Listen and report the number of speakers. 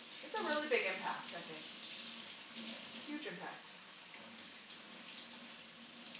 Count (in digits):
1